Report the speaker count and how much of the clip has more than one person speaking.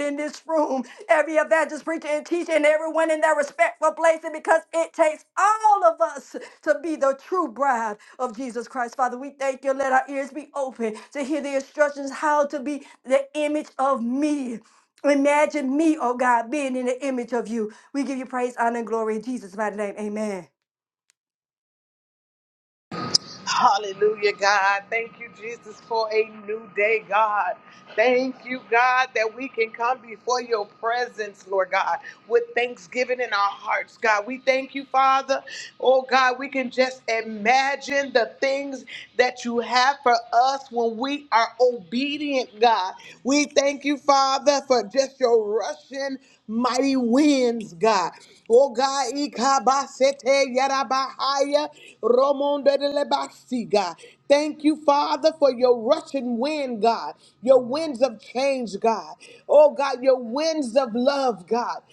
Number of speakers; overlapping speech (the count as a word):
two, no overlap